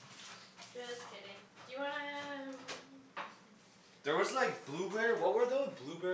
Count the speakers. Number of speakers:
two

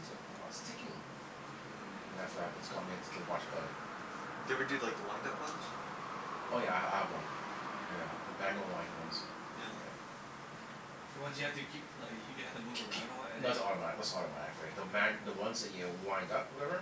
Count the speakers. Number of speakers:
three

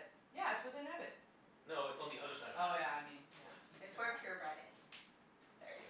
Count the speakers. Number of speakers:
three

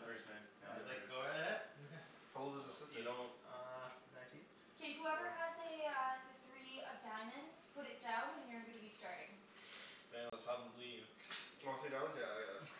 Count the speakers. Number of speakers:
four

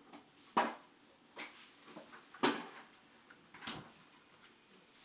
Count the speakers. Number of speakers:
zero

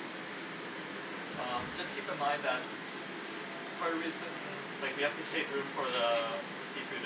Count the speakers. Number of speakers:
one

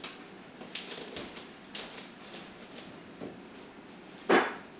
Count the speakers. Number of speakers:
zero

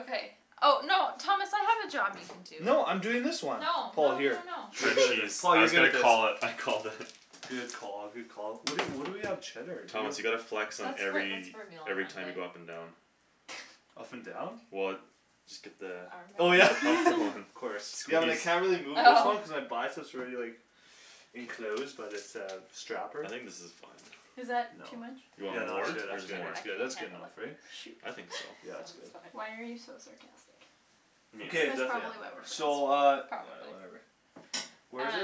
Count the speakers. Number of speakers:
four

